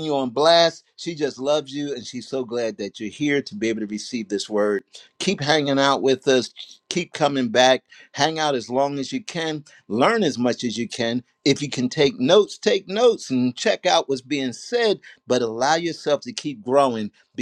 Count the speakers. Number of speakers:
1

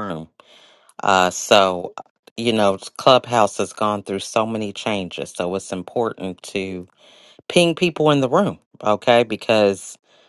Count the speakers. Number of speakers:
1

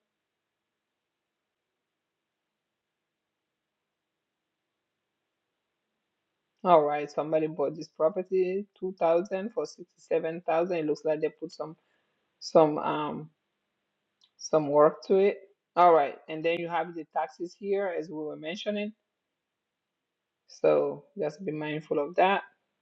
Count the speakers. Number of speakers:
1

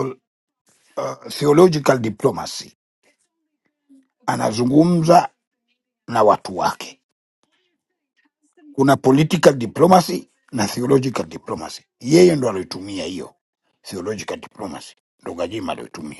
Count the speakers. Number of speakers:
1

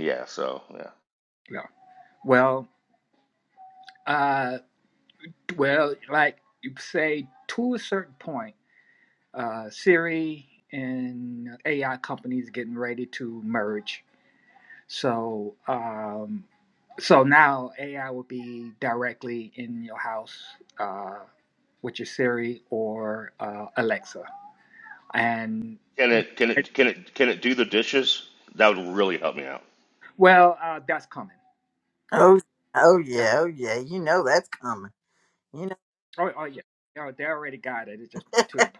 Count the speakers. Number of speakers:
3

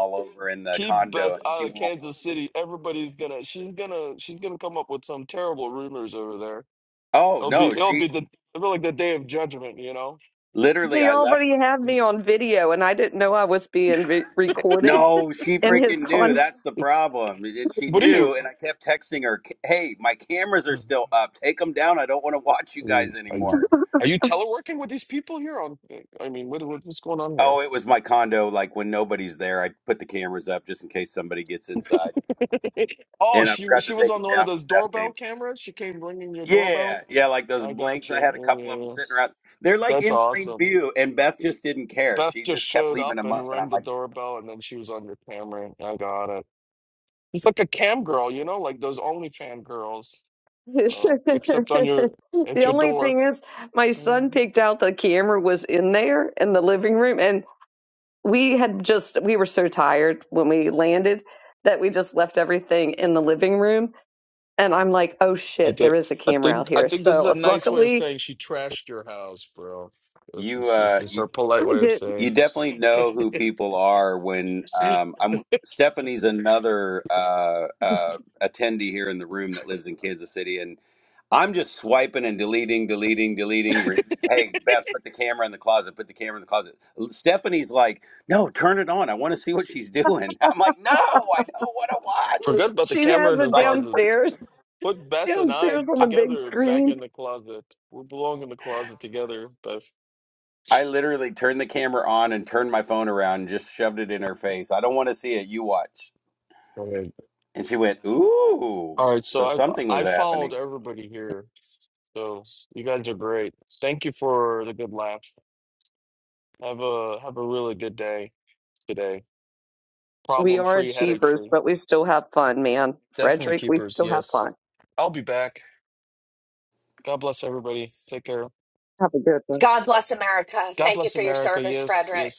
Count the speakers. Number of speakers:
4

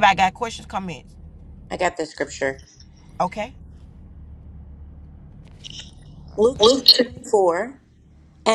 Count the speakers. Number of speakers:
2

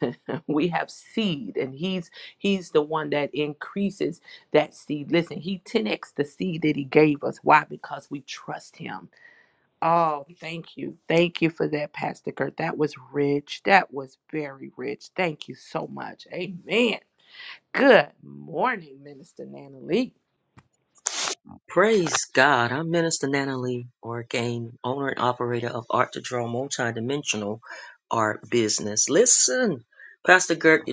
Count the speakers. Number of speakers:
2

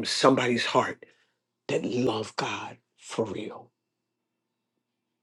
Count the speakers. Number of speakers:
1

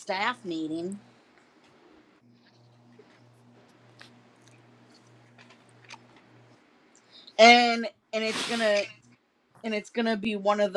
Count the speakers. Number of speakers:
1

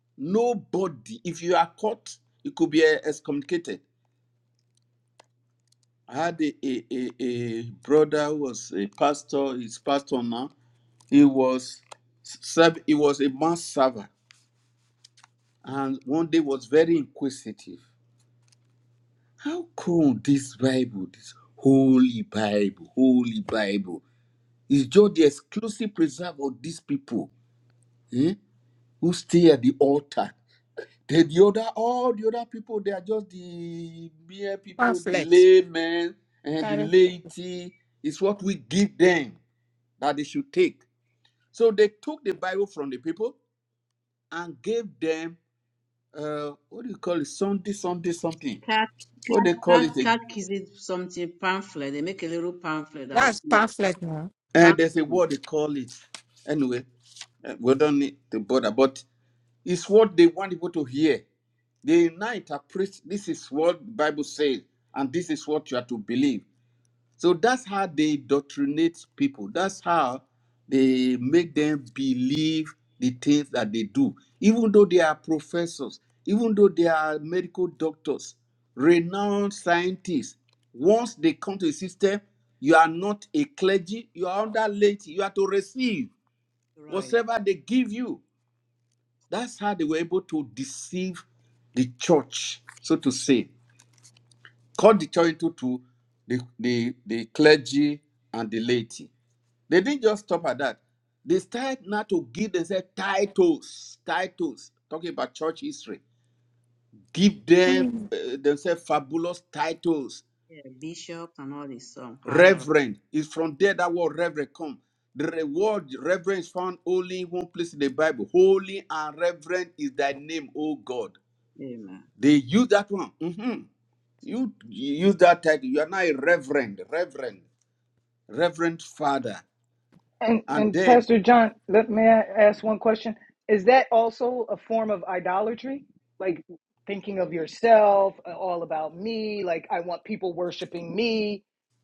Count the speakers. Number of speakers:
4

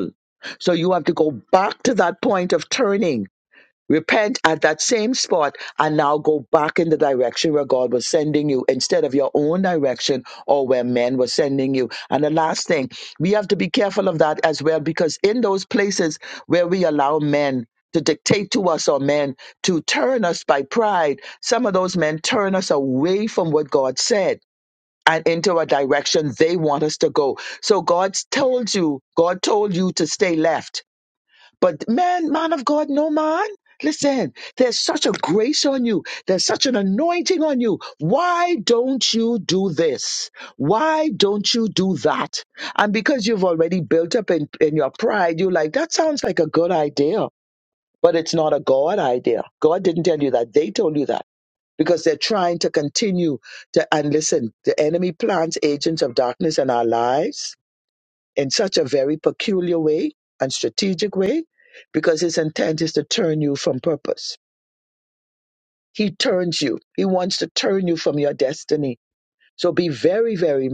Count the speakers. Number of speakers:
1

